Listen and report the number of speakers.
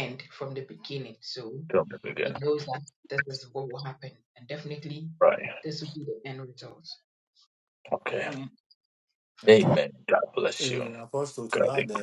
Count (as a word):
three